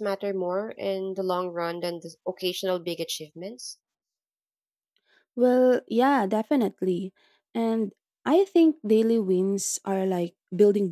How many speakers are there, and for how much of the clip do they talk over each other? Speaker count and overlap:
two, no overlap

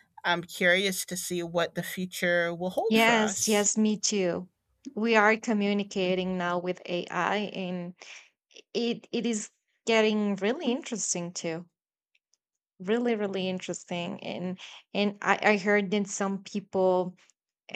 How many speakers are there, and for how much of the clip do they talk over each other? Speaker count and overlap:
two, about 4%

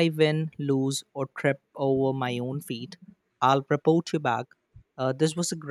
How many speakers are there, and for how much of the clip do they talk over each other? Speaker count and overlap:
one, no overlap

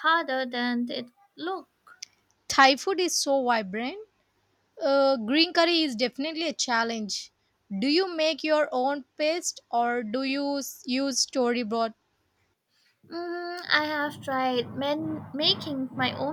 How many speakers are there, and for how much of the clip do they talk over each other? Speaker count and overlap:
two, no overlap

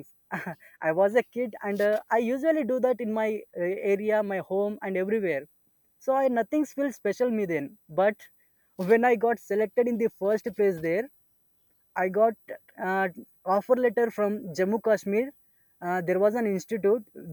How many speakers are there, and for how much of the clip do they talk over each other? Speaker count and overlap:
one, no overlap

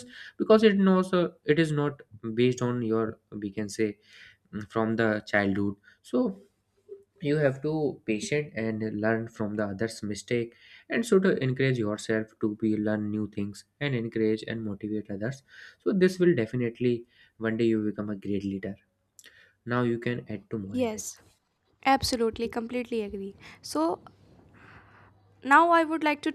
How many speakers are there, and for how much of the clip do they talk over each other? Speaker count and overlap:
two, about 1%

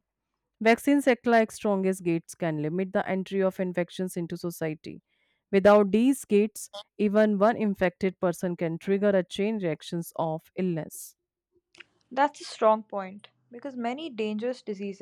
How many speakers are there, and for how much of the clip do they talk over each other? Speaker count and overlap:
two, no overlap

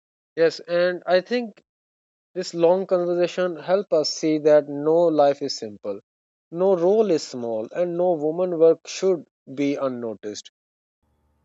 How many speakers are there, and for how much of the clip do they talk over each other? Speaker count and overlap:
one, no overlap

